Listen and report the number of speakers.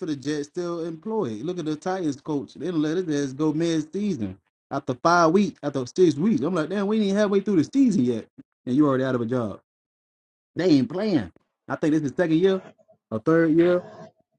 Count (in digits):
1